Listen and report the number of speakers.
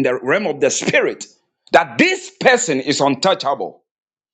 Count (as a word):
one